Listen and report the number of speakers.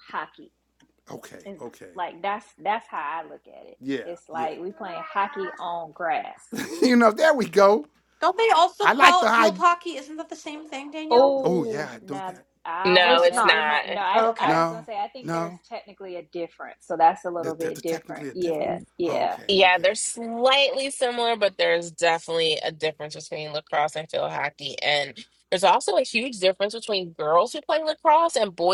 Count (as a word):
four